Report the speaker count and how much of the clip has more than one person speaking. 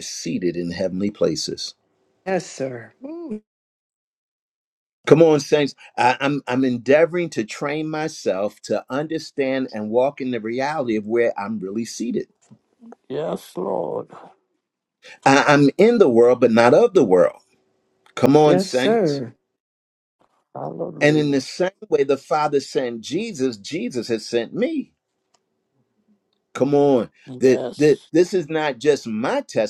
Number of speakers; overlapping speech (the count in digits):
3, about 5%